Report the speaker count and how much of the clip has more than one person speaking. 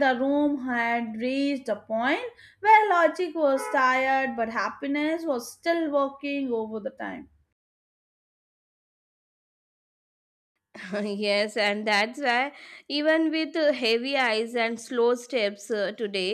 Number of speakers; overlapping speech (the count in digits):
2, no overlap